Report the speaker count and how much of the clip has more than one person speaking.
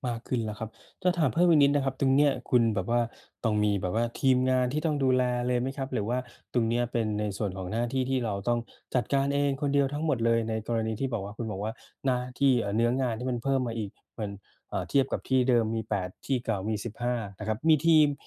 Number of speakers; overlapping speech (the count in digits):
1, no overlap